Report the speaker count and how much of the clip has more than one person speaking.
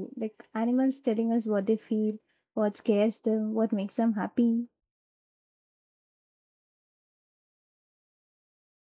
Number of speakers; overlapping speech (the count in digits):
1, no overlap